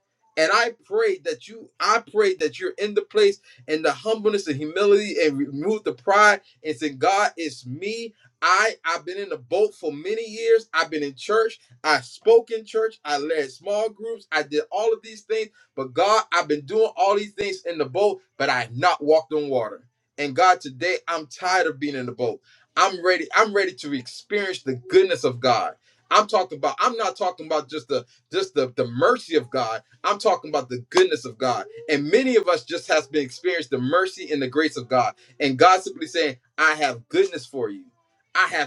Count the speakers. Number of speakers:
1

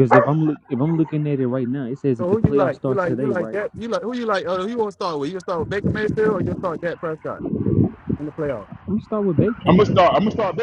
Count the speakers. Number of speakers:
3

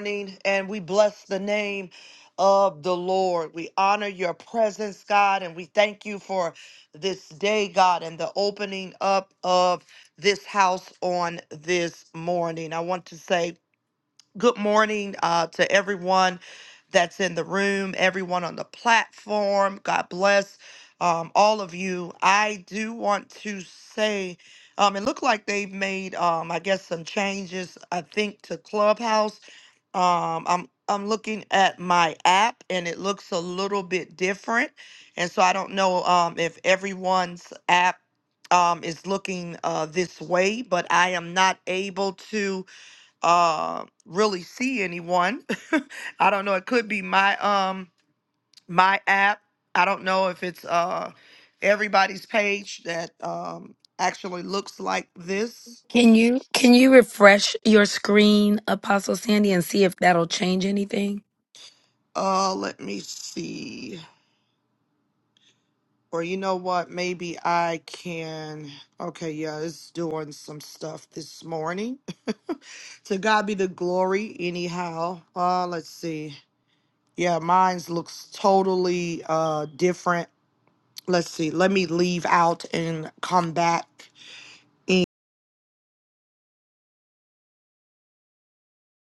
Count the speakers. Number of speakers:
2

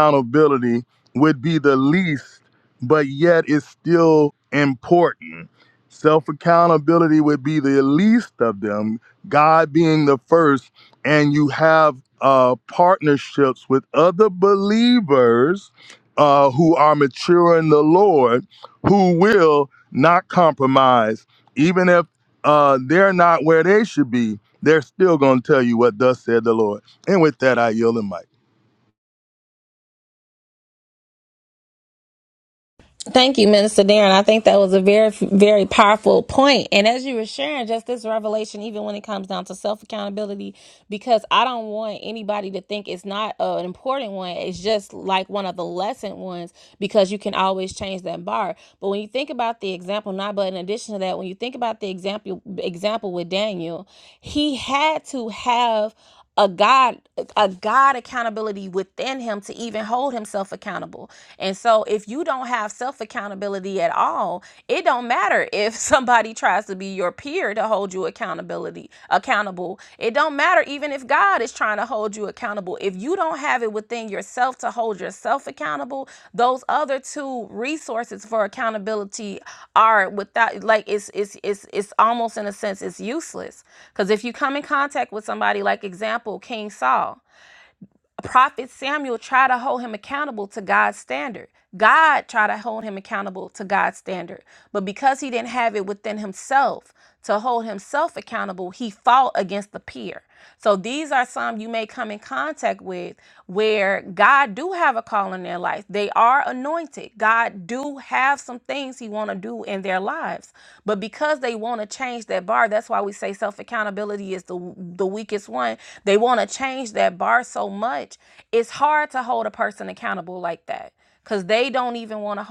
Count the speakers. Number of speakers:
2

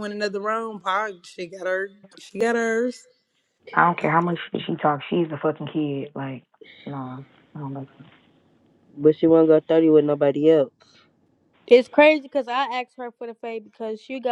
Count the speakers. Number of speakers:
4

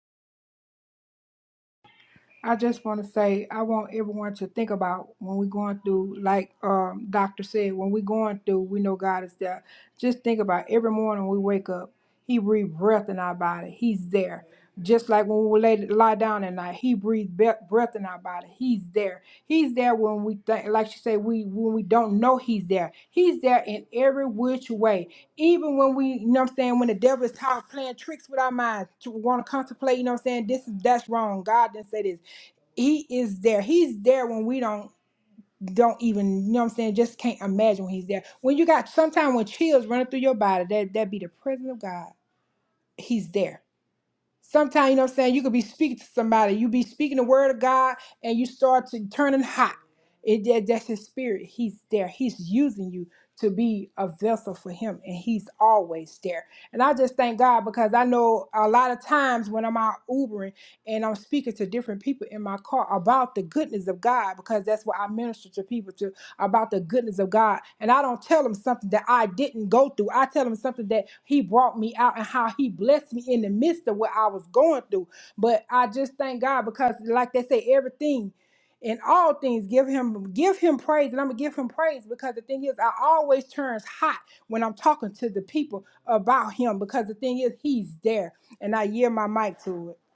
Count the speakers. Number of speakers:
1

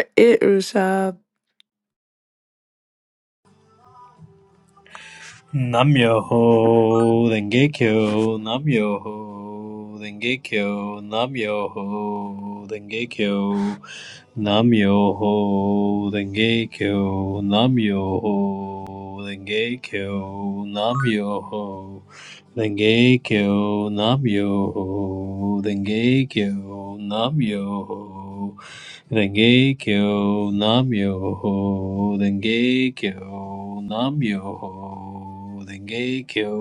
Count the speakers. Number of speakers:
2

